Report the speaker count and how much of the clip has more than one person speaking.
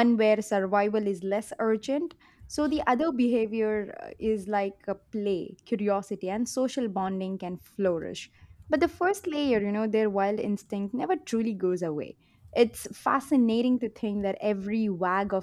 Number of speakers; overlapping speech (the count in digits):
1, no overlap